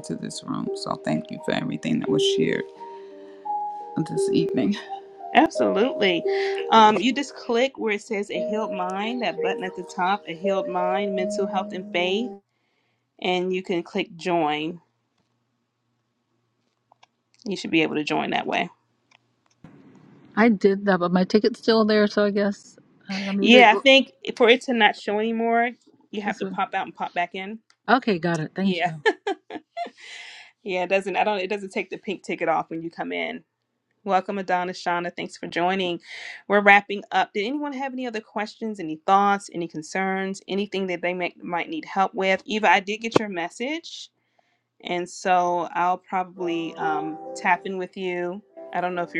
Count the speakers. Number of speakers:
3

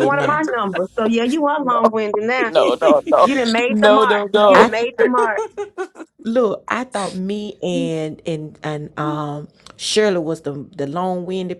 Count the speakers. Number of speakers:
3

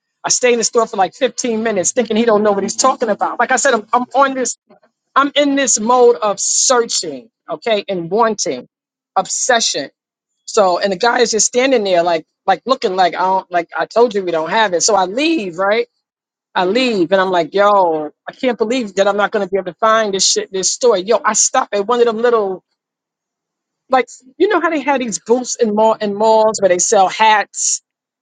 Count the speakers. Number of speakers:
1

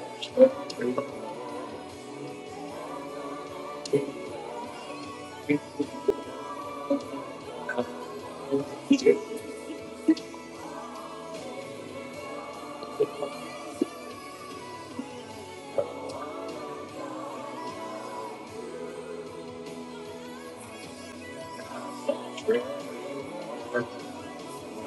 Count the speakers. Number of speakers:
0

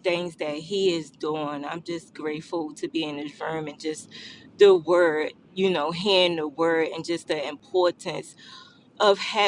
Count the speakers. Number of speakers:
1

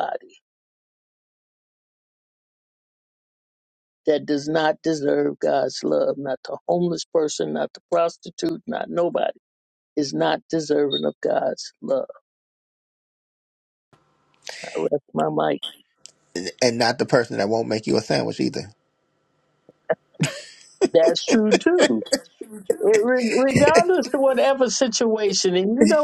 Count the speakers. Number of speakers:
2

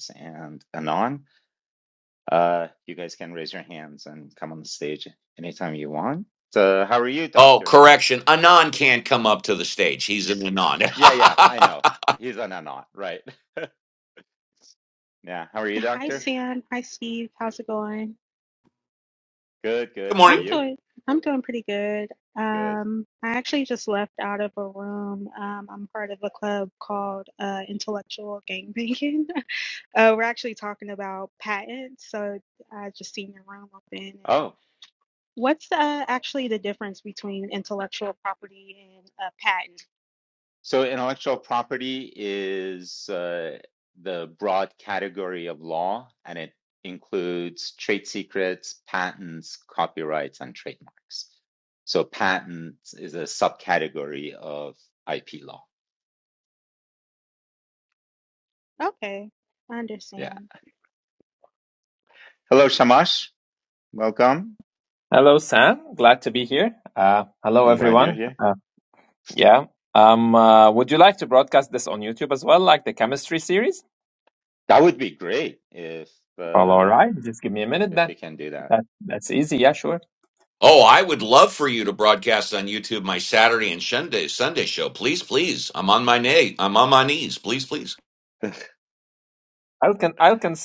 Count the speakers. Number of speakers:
4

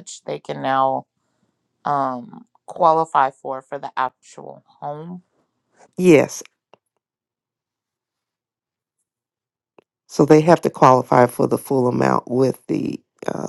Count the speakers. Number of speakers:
2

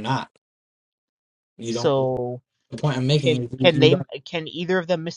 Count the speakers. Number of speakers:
2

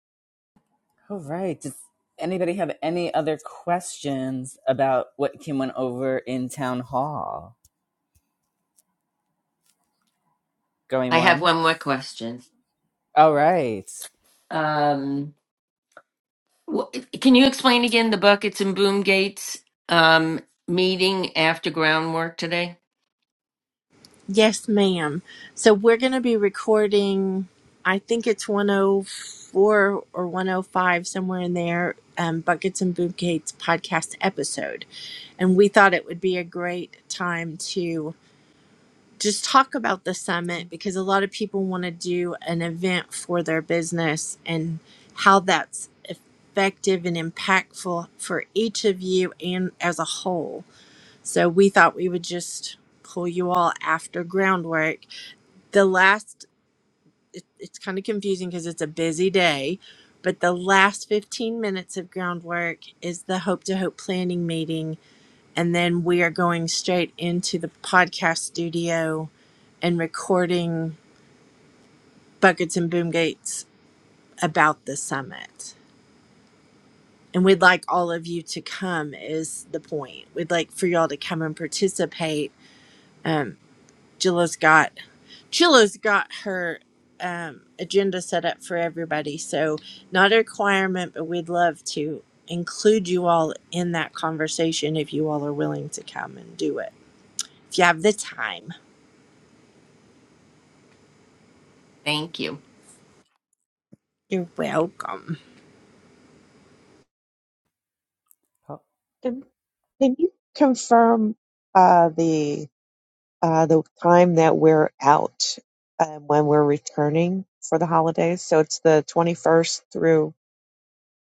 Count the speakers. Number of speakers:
4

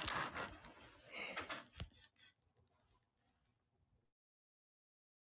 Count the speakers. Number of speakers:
0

